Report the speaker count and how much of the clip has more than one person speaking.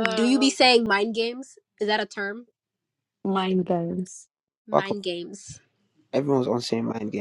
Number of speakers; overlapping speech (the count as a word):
three, about 11%